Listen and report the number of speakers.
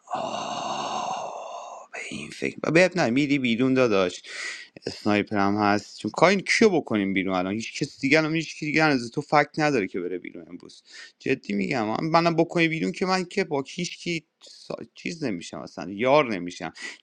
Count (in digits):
1